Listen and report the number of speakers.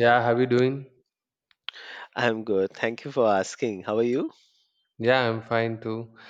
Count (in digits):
2